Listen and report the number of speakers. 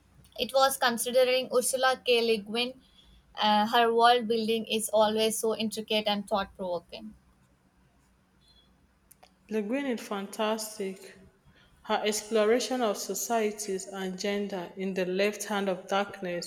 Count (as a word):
two